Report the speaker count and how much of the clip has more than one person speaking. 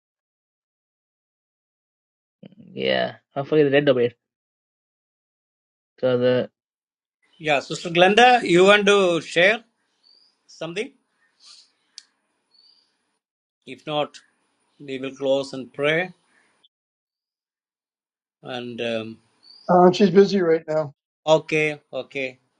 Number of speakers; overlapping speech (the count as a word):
three, no overlap